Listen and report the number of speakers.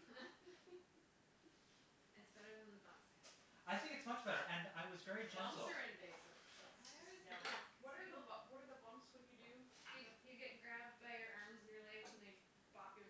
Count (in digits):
4